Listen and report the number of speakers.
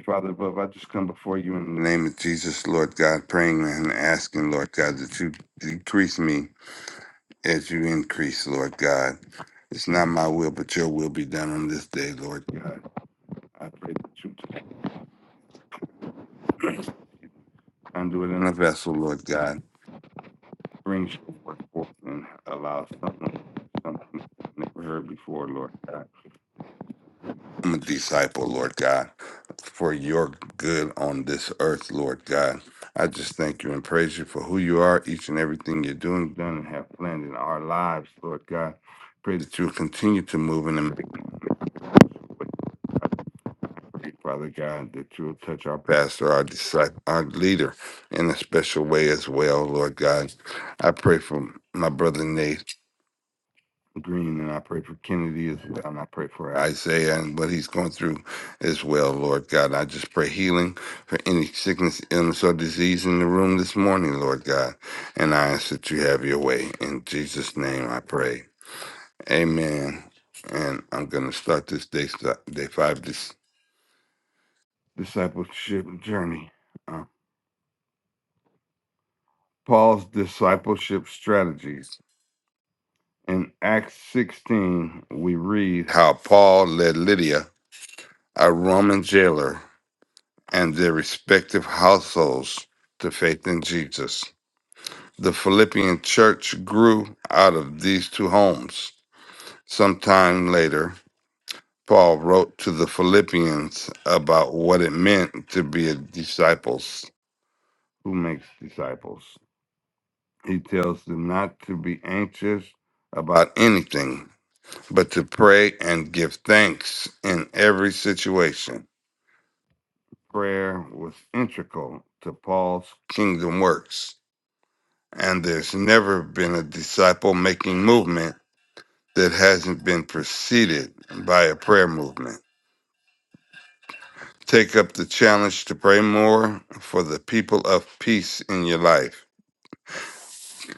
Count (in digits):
1